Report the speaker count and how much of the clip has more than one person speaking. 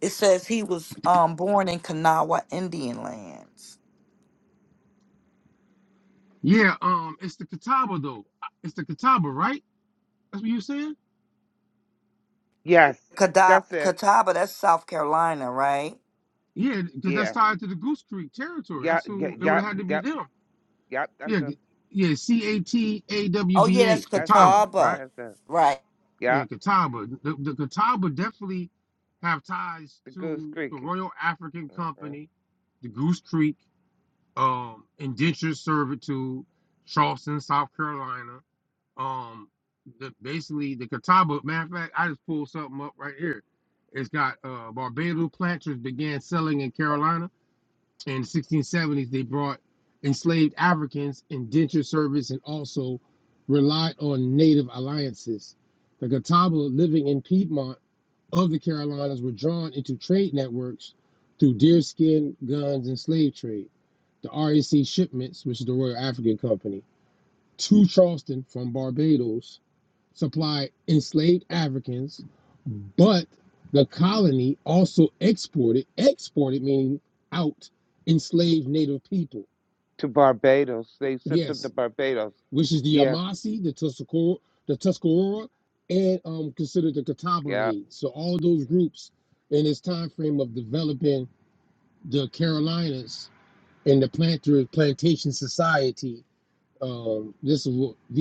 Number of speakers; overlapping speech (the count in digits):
3, about 5%